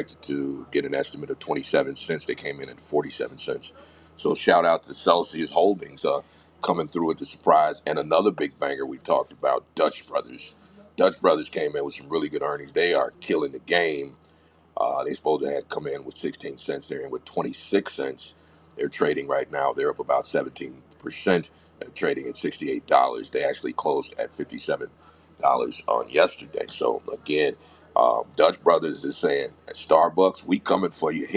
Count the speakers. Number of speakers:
1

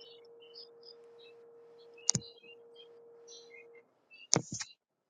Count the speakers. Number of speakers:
0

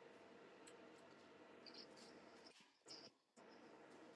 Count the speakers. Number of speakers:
0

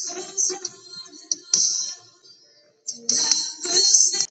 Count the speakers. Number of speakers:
0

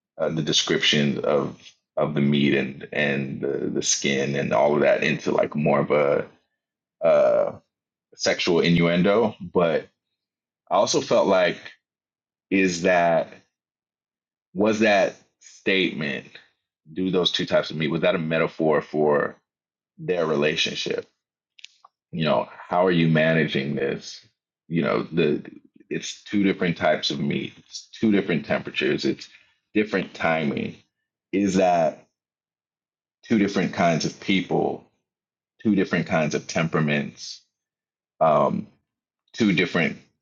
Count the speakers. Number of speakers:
1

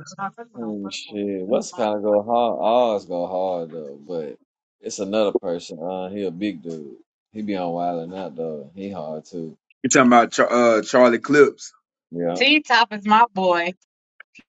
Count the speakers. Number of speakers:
3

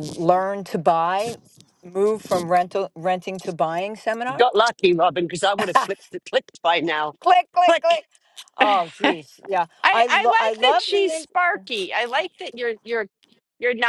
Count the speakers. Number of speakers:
3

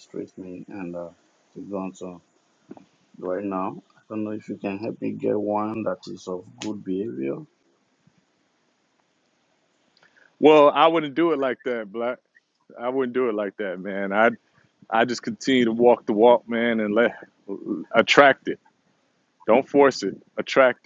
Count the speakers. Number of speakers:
2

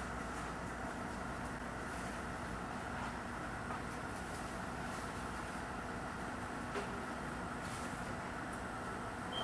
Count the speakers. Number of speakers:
0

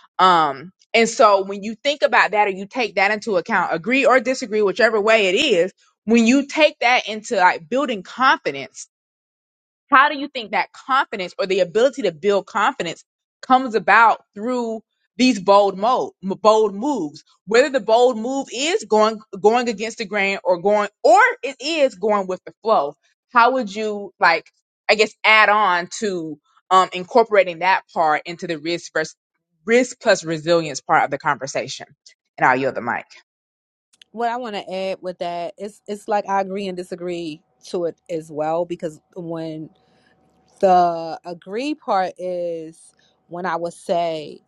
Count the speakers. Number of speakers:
2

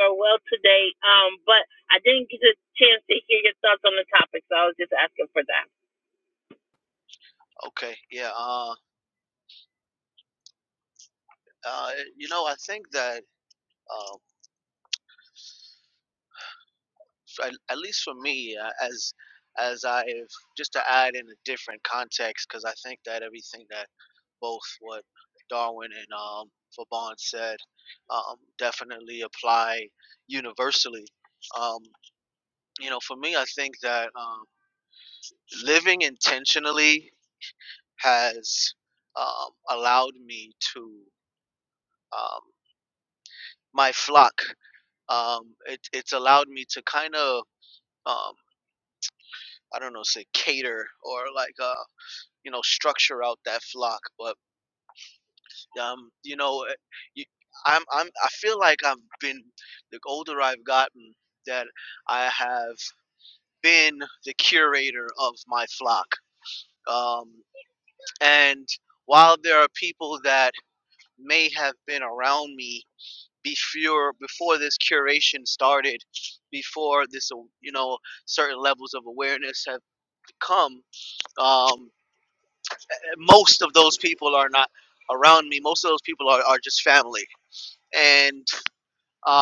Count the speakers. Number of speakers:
2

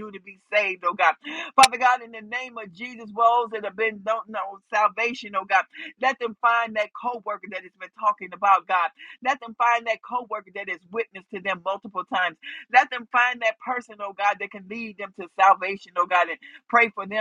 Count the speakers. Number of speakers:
1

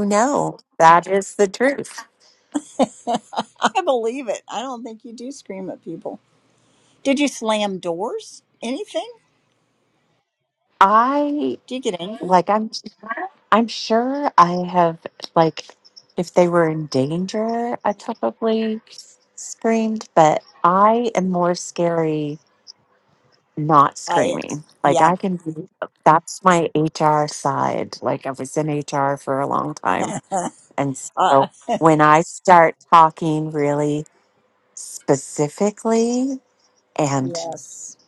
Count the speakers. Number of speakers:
2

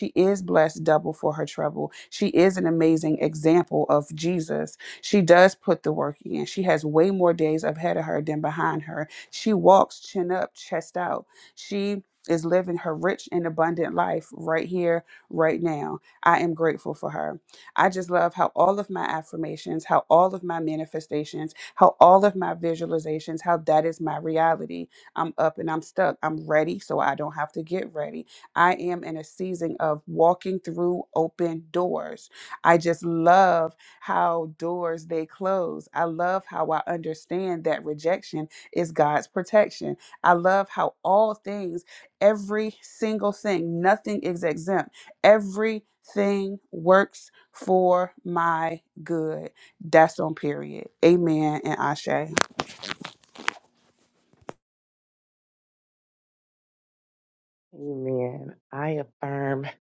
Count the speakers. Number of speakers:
2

